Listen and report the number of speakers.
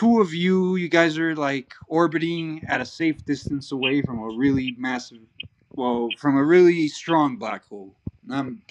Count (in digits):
1